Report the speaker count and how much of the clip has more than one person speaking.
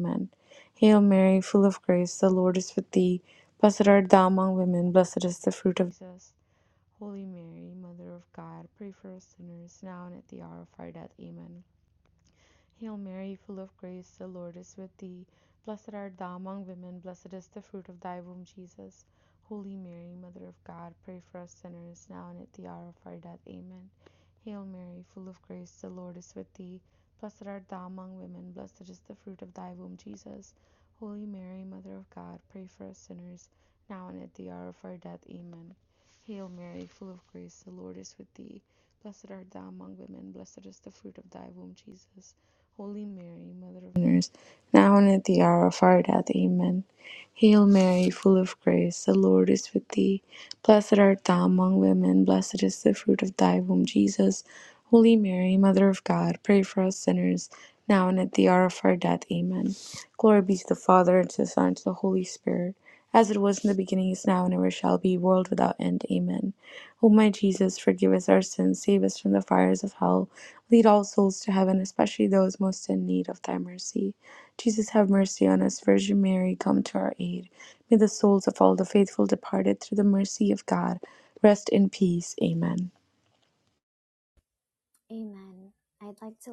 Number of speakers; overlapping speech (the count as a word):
two, no overlap